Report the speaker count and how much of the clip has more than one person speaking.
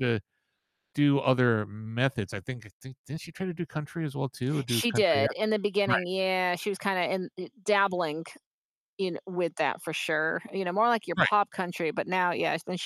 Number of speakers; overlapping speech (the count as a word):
two, about 8%